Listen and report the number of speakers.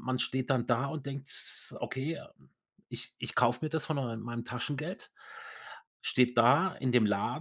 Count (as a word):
one